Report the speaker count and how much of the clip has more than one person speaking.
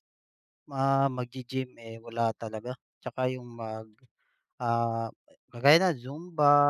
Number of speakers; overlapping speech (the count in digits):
1, no overlap